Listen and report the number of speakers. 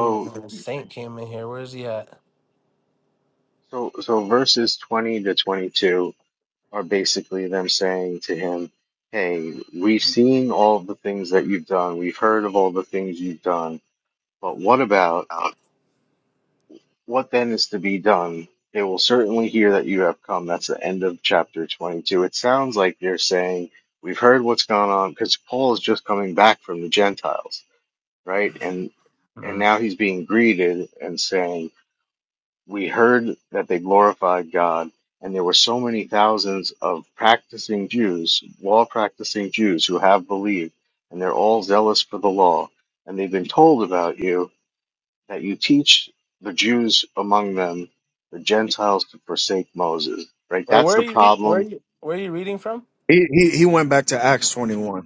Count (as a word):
three